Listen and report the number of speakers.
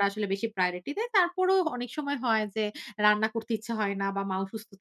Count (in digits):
1